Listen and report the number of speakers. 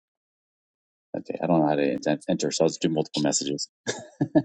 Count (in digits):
1